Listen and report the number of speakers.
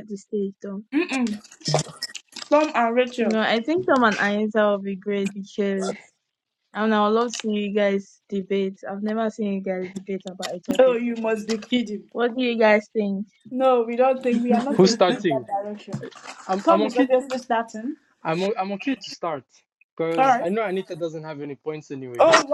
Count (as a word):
three